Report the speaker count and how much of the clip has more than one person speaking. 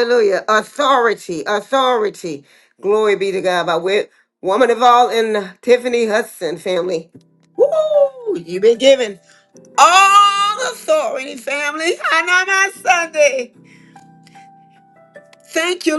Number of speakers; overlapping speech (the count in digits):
1, no overlap